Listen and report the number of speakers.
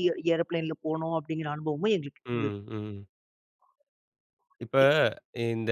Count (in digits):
2